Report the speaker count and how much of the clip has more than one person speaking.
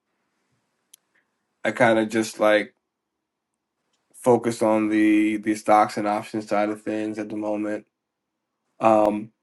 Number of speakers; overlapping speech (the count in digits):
1, no overlap